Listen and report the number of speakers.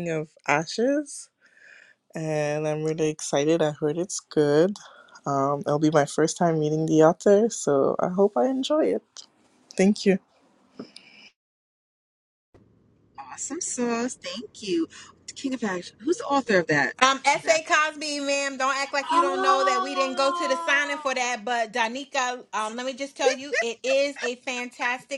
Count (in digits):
3